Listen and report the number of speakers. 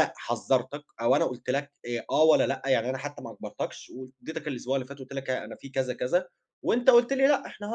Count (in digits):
1